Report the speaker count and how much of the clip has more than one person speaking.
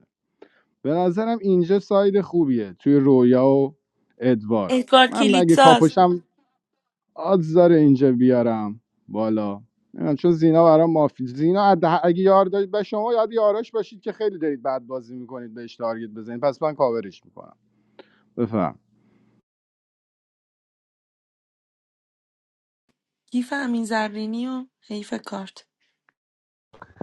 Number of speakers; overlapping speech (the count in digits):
2, about 3%